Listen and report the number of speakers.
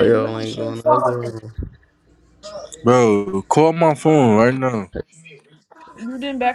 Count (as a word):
three